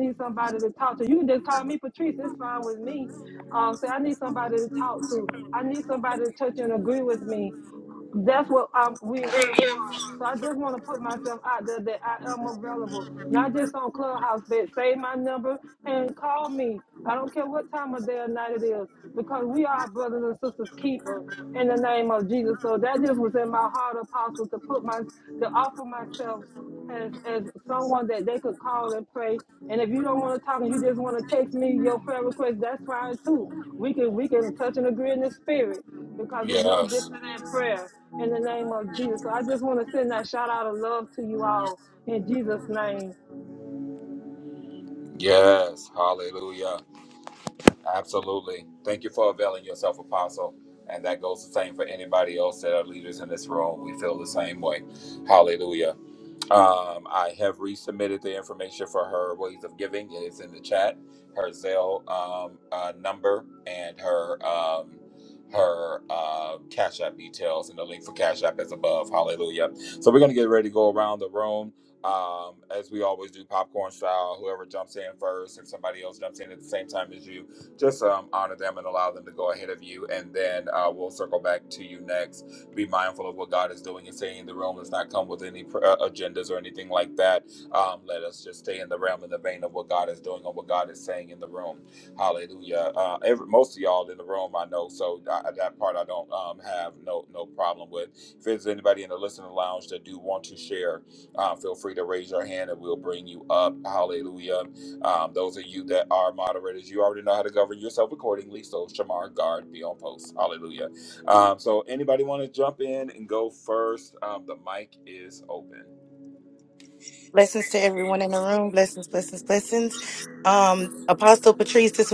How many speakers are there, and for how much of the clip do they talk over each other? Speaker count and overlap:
3, under 1%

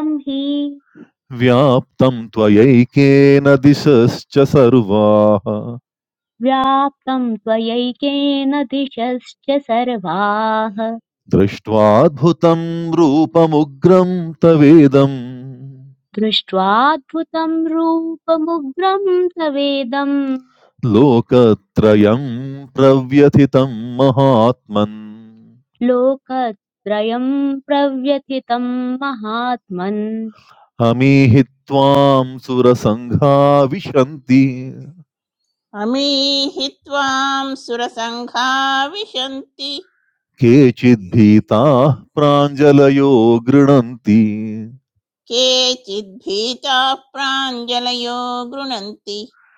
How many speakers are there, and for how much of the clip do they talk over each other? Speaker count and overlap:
3, no overlap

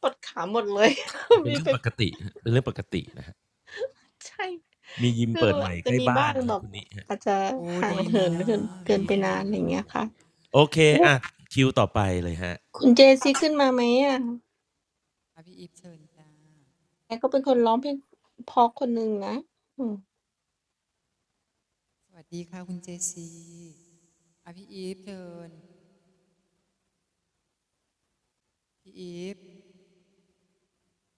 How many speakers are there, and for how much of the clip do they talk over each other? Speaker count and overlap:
3, about 9%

